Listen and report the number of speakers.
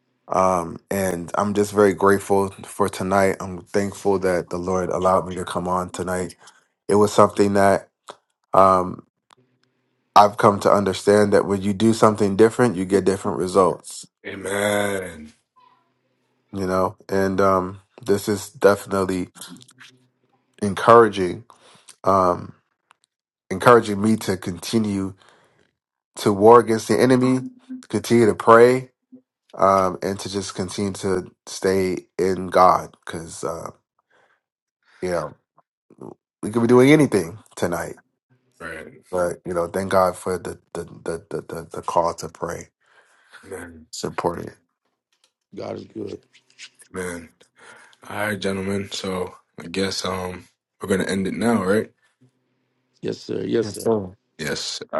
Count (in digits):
3